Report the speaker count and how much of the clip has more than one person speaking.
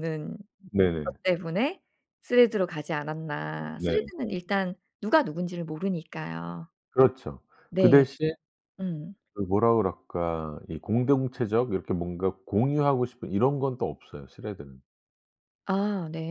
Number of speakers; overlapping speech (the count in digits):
2, about 4%